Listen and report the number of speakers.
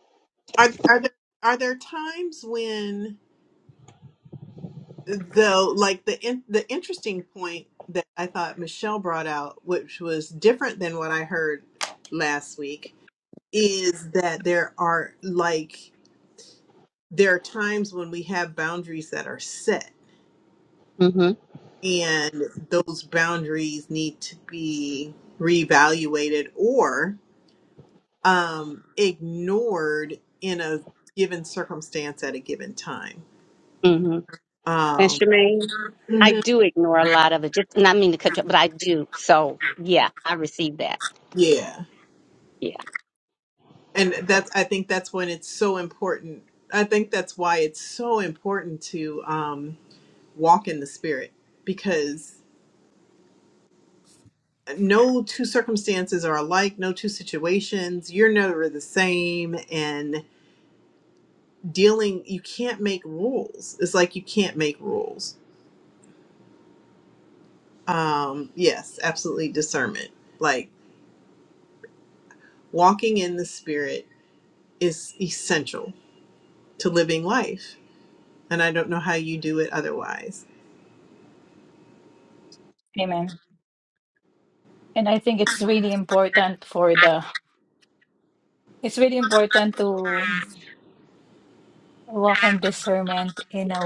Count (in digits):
3